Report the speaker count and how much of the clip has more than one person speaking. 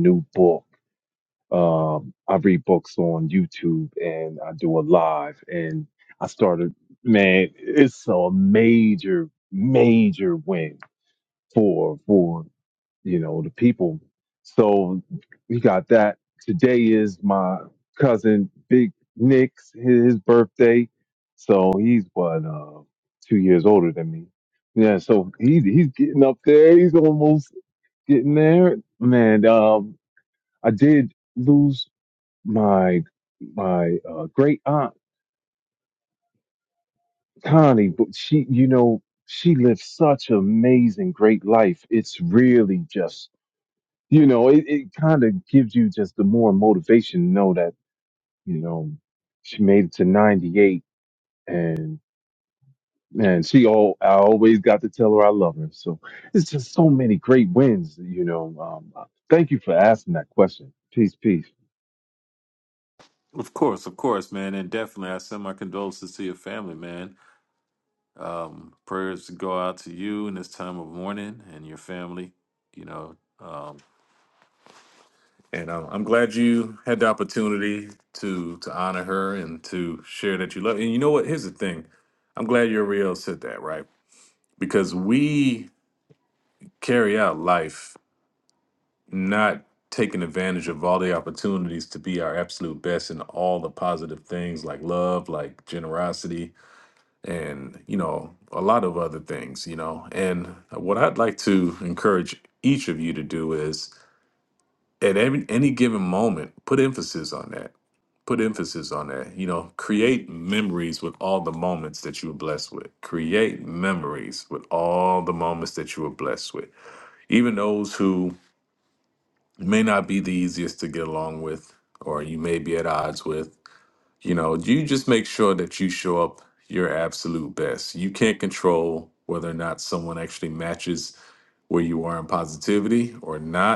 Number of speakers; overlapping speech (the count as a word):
two, no overlap